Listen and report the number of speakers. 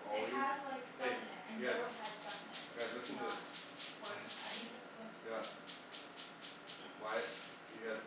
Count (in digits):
2